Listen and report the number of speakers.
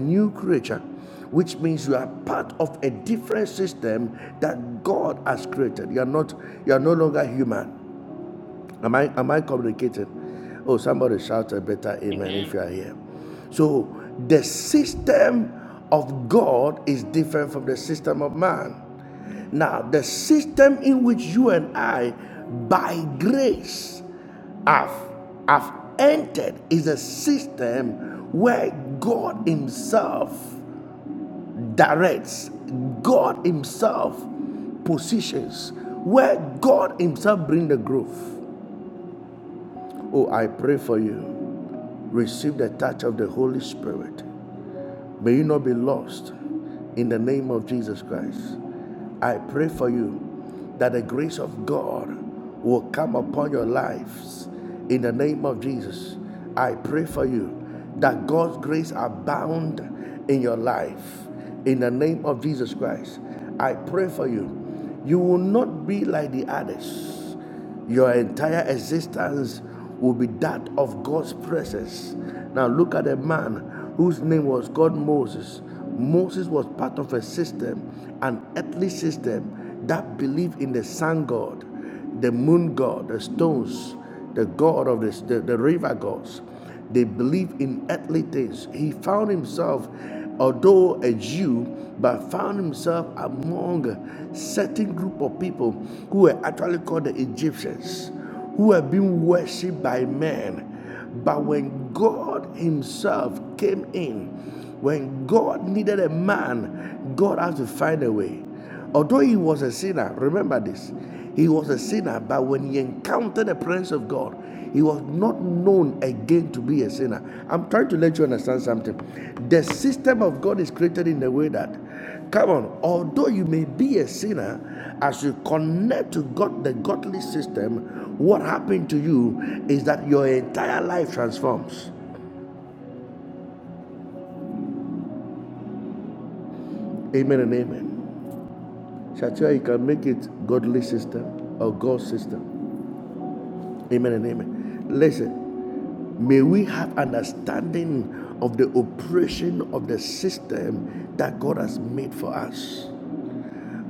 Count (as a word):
one